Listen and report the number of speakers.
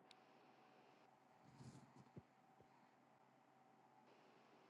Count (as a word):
zero